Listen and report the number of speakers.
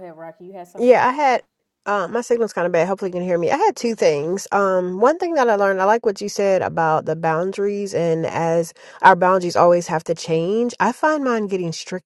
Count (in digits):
2